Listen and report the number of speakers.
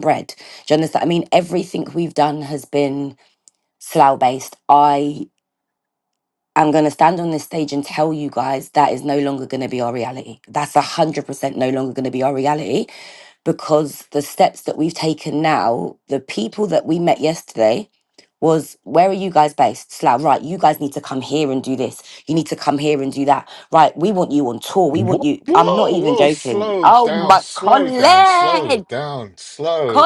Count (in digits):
2